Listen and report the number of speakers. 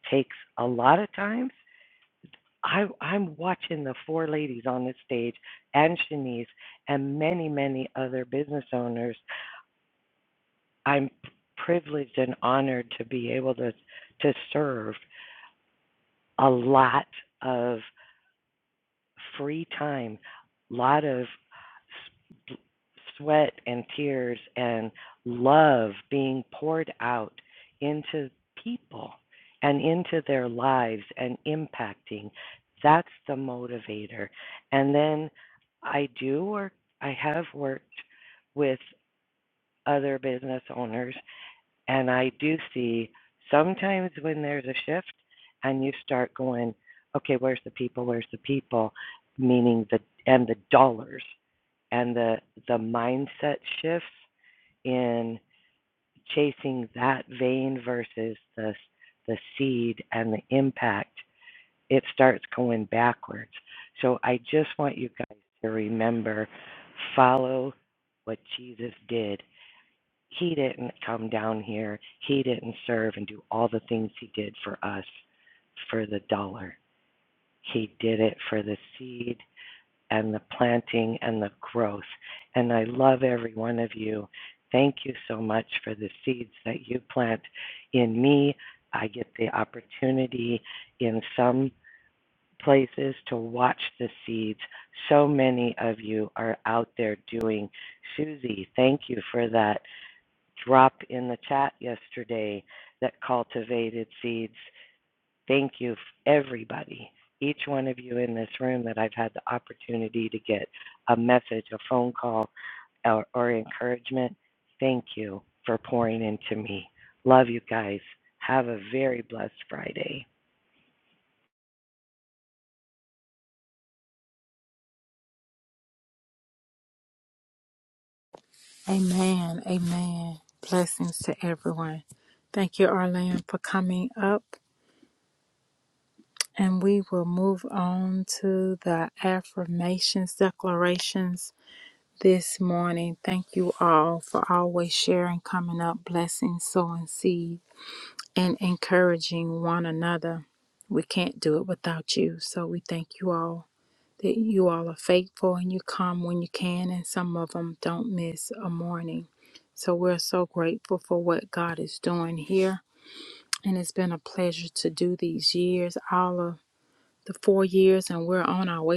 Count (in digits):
2